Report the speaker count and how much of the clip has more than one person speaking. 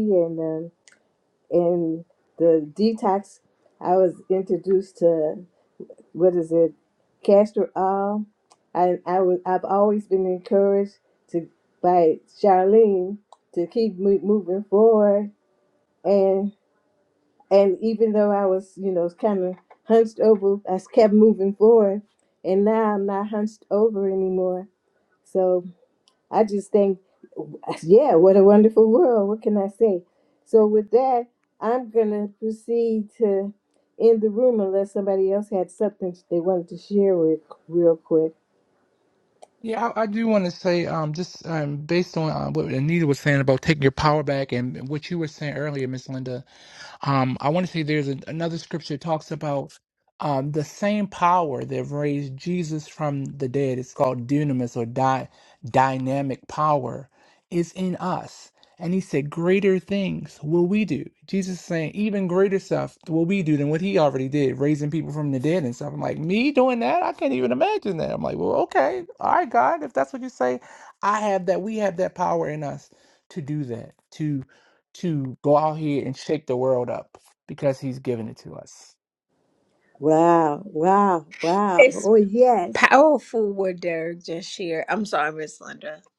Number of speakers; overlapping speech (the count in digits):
3, under 1%